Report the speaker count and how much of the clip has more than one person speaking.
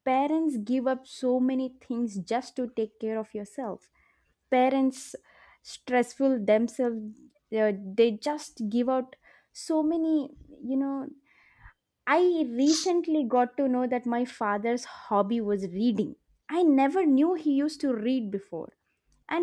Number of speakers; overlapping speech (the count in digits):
1, no overlap